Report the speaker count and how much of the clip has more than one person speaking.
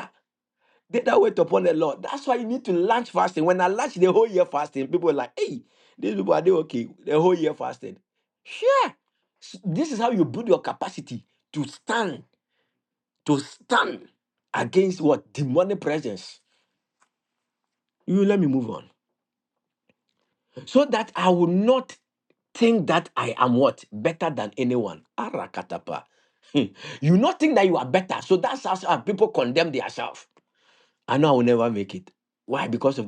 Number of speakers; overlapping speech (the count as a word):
one, no overlap